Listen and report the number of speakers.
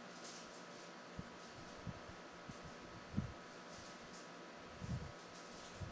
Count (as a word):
zero